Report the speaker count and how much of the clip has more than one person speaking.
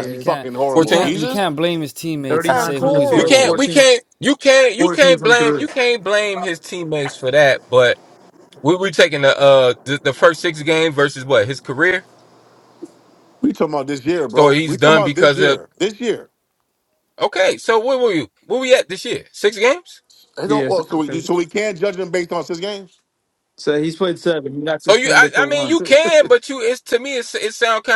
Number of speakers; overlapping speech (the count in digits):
4, about 23%